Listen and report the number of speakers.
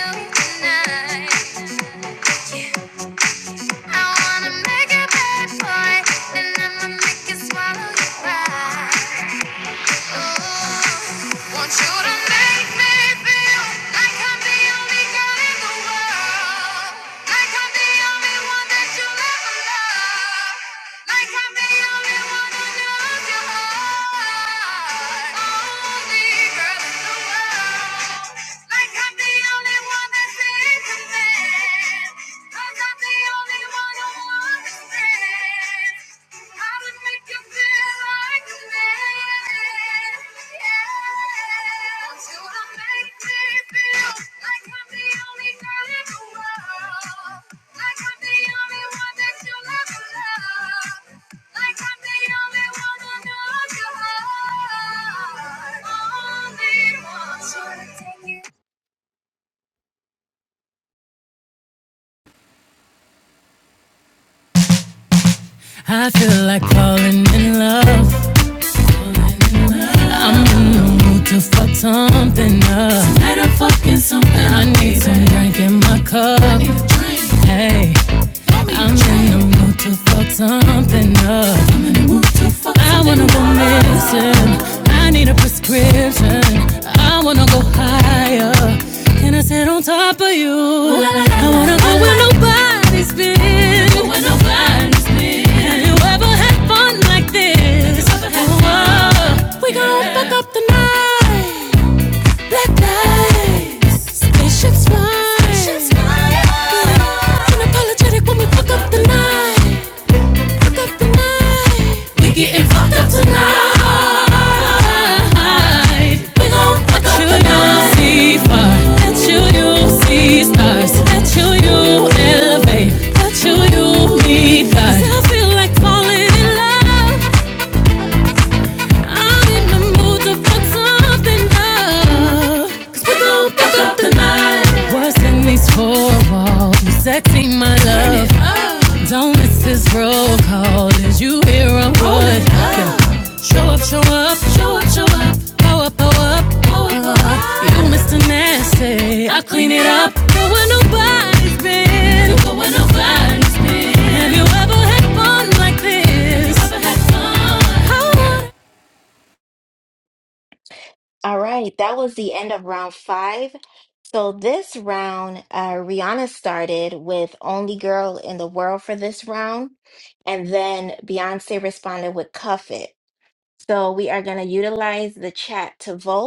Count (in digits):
3